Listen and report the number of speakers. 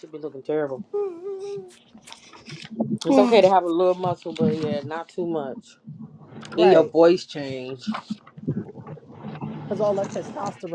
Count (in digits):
3